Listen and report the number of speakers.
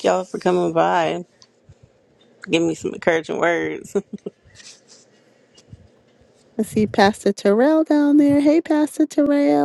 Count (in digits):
2